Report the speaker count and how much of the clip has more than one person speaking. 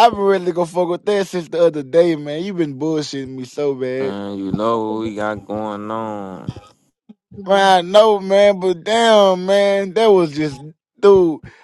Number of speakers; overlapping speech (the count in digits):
2, about 1%